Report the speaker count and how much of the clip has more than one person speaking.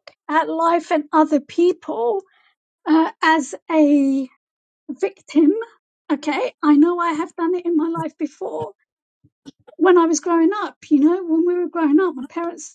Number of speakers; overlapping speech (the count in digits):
1, no overlap